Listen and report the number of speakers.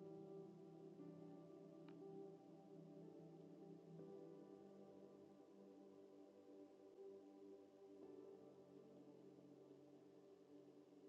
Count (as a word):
zero